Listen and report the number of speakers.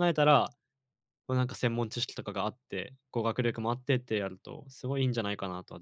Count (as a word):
one